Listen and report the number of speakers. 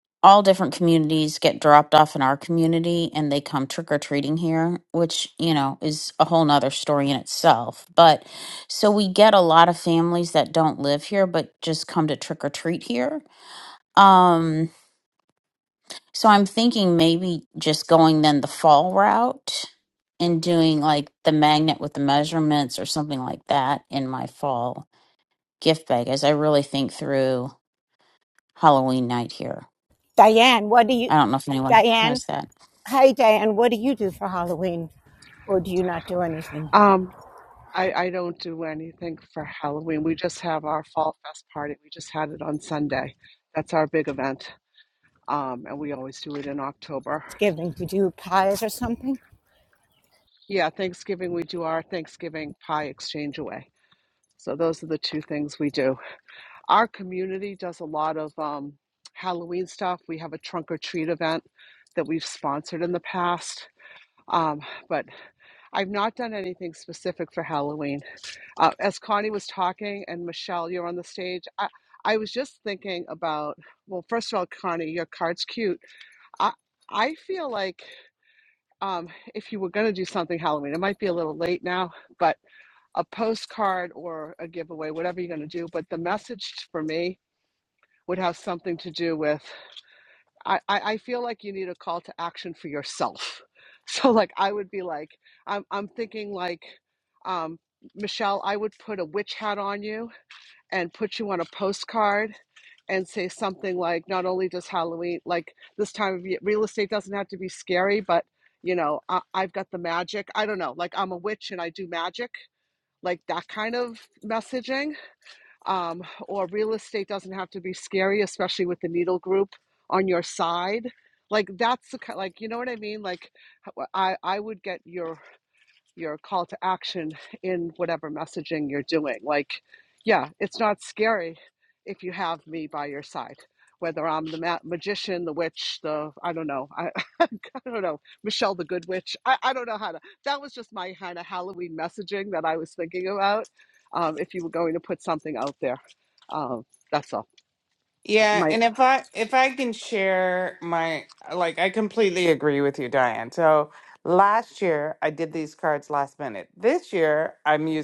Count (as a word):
four